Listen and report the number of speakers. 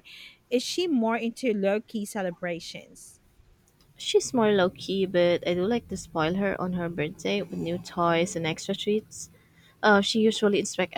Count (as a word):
two